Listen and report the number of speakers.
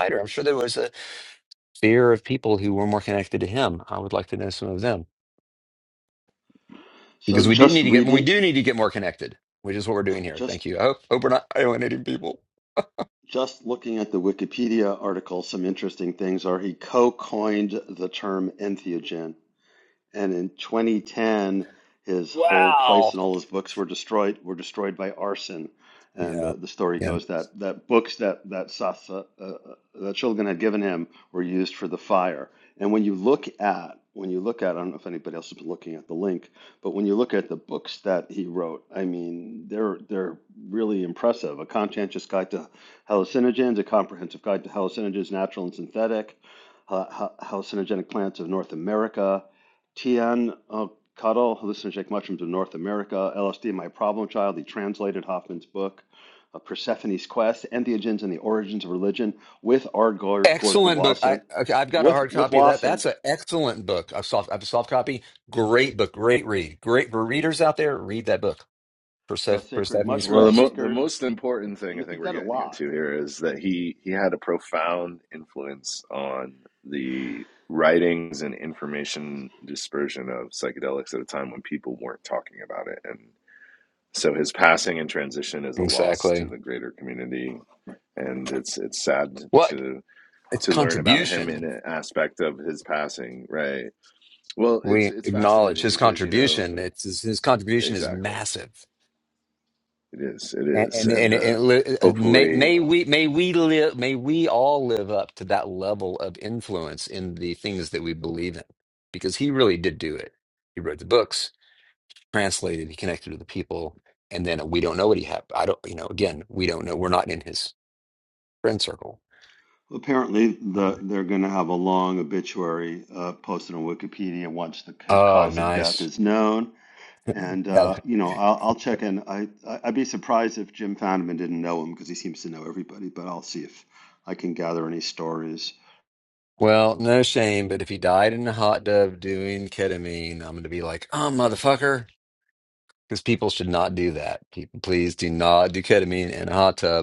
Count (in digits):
3